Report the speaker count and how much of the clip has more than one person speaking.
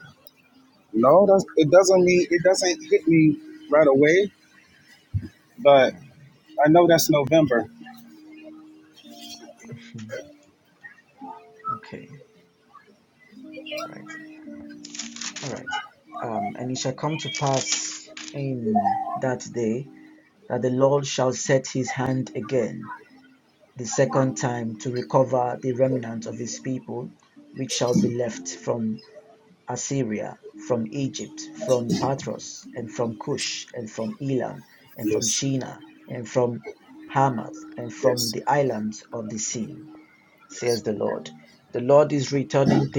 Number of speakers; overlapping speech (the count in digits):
2, about 1%